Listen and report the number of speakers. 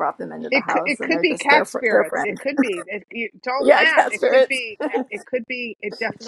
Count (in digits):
2